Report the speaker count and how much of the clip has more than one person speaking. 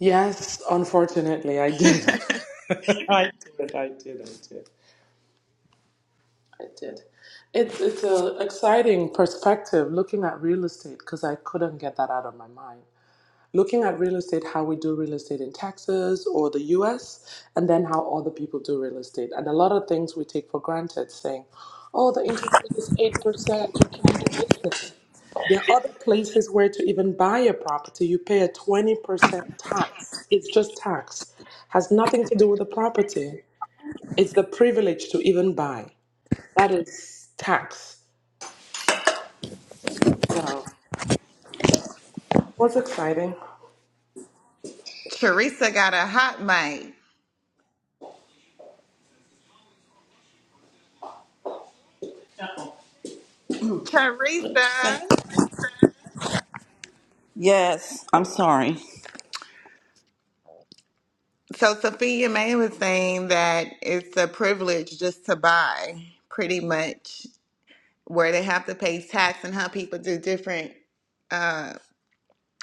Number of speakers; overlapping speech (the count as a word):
three, about 1%